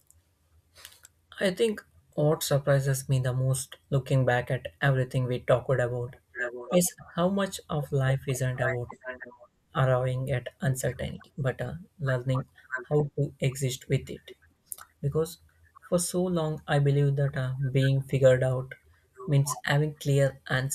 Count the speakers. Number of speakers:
1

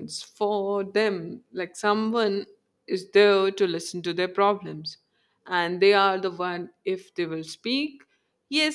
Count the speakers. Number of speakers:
1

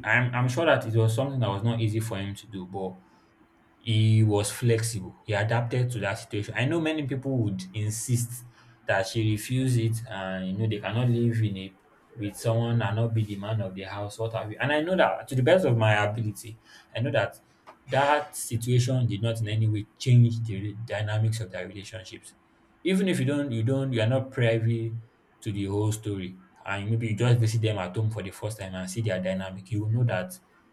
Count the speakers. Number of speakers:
1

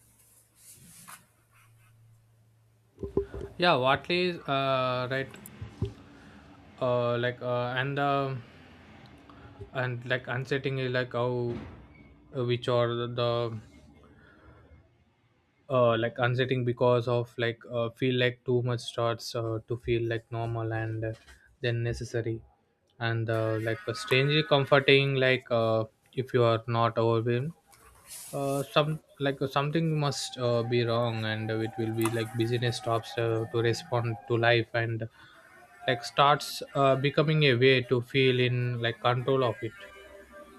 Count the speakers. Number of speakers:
1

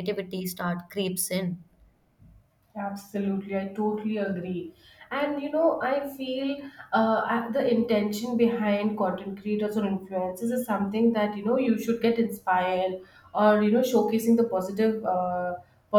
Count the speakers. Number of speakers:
2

